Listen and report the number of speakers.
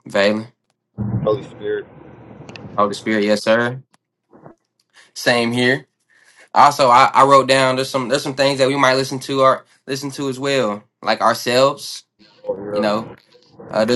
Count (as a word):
two